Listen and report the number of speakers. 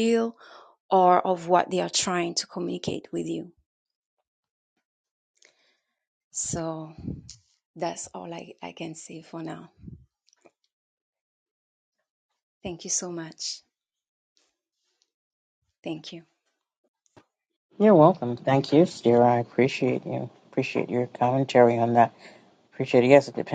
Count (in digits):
2